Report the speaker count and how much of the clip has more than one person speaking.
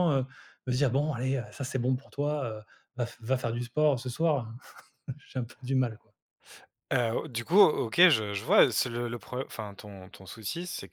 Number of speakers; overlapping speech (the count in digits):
2, no overlap